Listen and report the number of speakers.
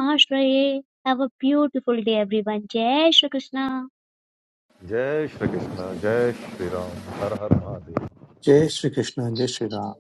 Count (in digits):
3